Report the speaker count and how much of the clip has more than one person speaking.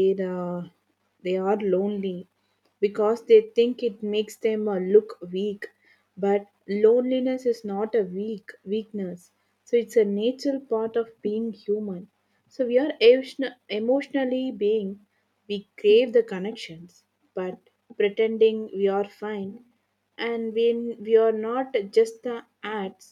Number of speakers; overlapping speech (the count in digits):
1, no overlap